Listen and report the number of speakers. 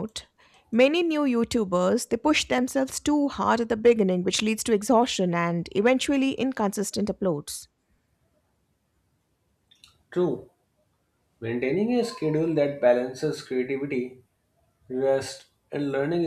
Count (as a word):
two